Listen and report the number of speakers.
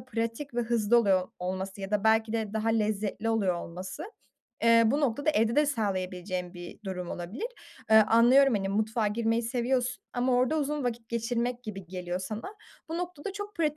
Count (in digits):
1